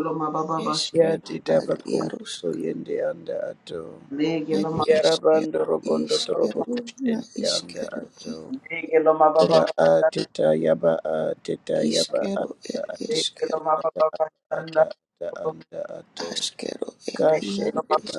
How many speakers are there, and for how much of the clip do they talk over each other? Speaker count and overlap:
3, about 49%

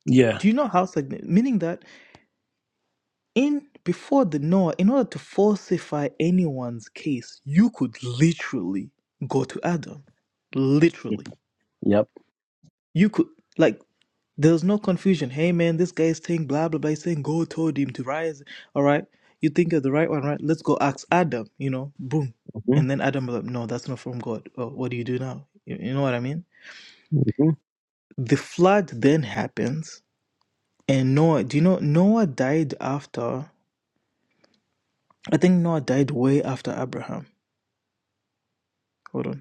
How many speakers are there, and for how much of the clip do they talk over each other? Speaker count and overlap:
2, under 1%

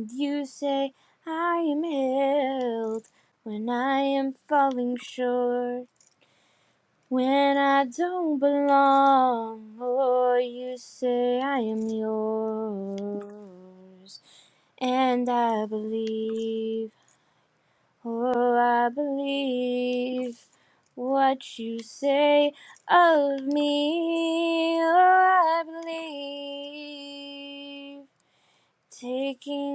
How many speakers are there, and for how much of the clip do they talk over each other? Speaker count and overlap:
1, no overlap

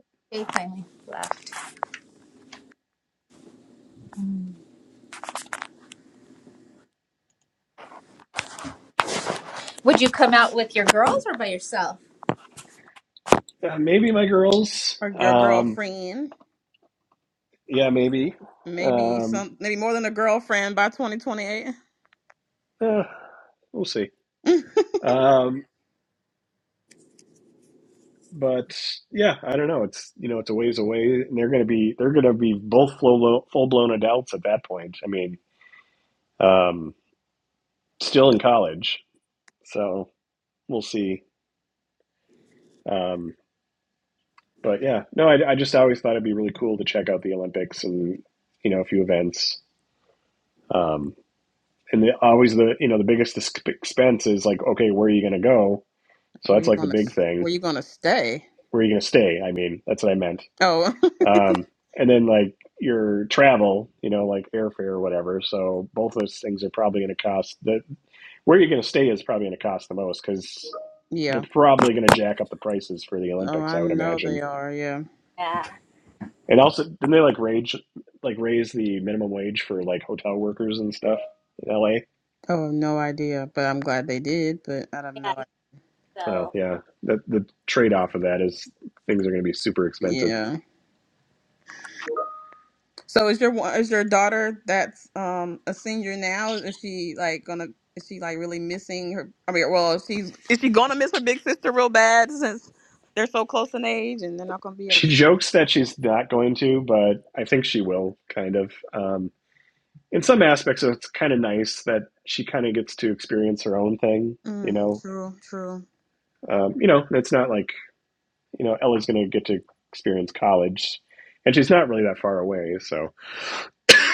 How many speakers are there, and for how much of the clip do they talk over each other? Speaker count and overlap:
3, about 4%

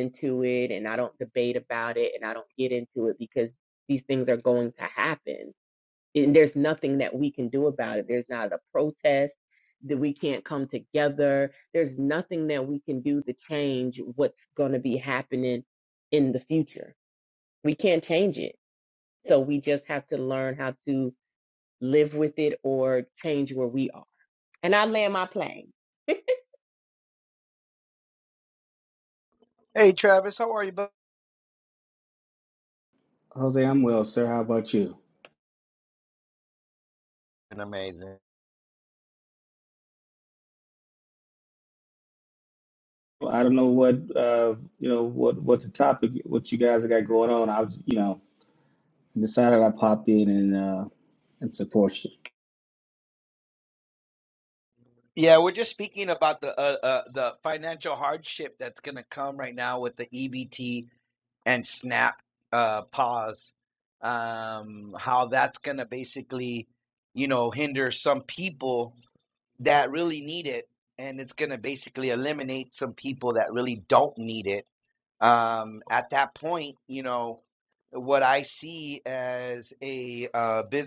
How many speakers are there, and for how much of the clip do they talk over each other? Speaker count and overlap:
3, no overlap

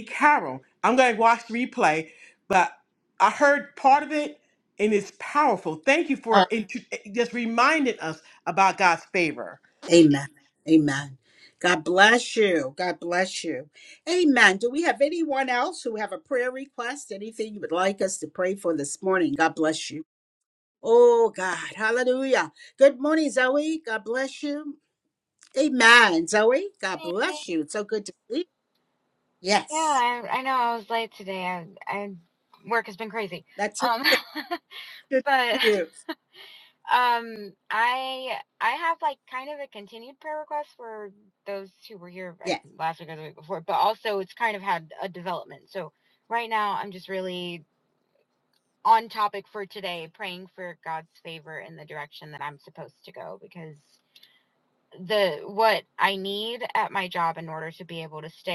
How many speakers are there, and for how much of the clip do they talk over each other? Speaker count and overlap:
3, about 2%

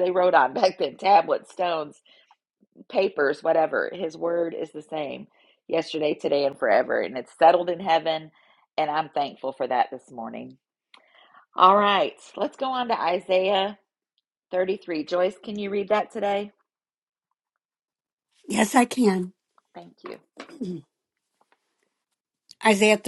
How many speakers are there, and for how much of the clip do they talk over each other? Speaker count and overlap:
2, no overlap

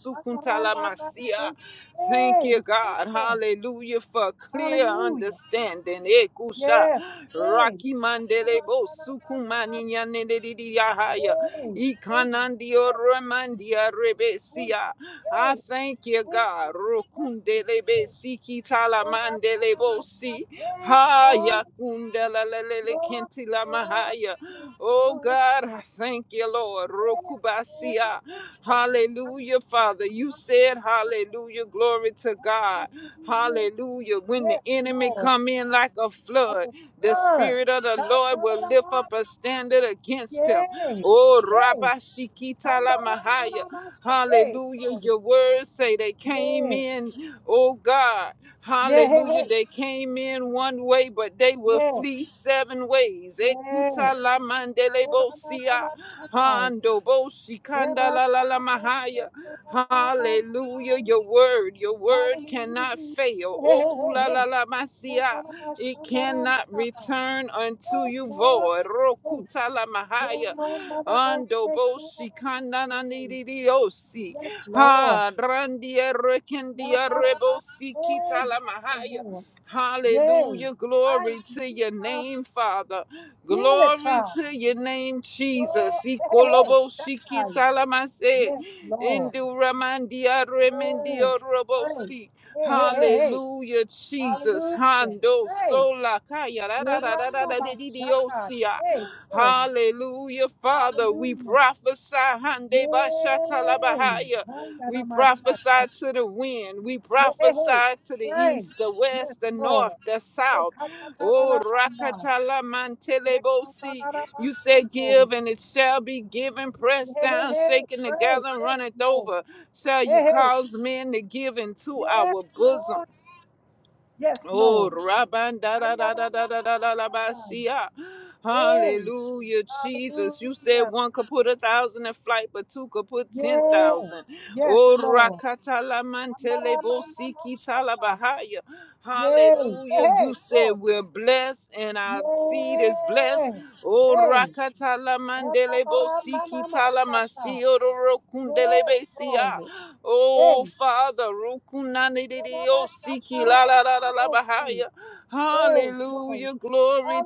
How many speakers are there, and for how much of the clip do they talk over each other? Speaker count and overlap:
2, about 38%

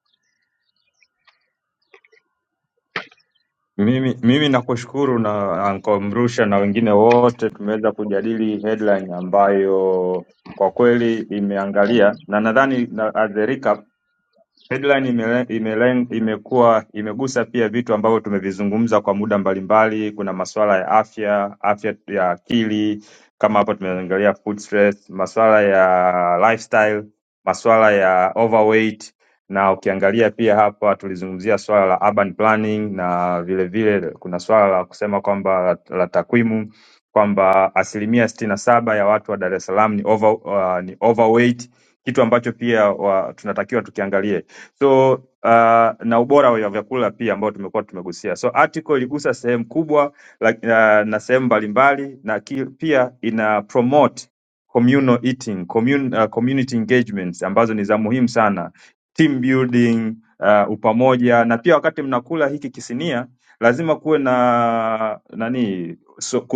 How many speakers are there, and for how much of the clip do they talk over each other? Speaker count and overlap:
1, no overlap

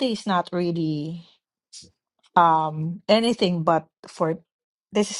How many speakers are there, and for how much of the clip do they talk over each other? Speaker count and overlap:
1, no overlap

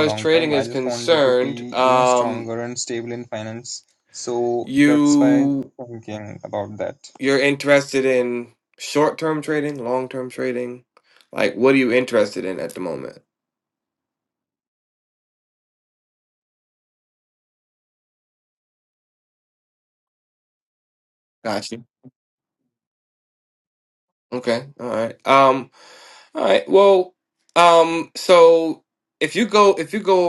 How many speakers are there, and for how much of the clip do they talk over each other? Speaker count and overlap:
2, about 11%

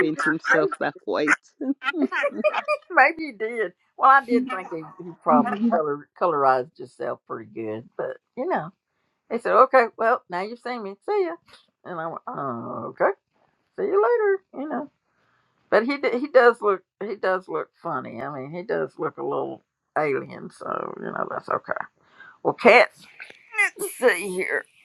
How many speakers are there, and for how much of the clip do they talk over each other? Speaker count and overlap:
2, about 3%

